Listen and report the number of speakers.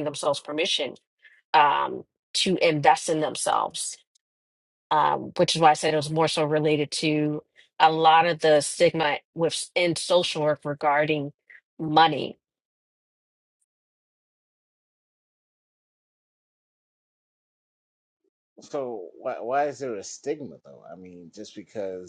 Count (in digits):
2